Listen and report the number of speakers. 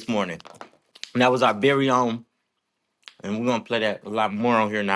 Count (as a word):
one